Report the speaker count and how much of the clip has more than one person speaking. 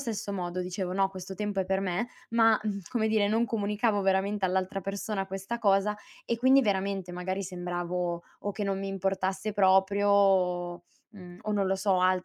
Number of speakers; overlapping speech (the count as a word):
one, no overlap